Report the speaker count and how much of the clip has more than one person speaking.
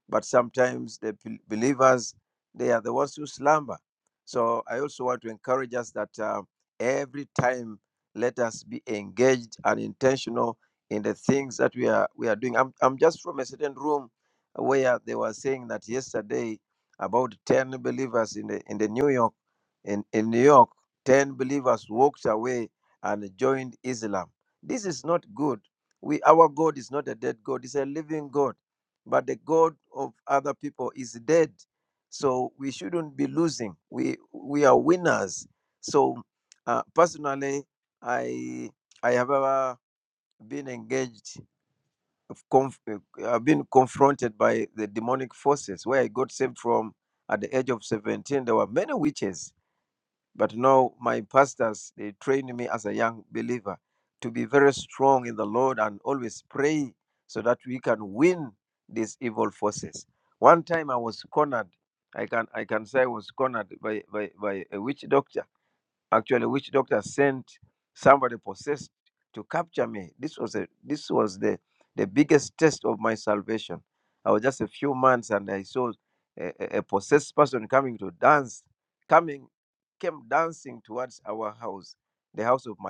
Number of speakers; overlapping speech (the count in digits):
1, no overlap